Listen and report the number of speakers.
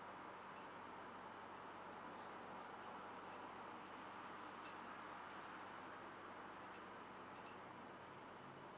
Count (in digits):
0